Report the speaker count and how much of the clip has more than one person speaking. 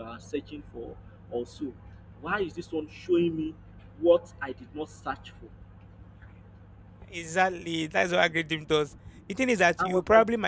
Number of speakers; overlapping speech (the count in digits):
2, about 4%